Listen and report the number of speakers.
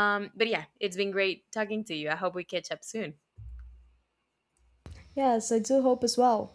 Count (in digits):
2